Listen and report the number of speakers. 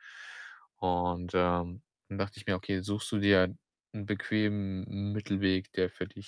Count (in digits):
1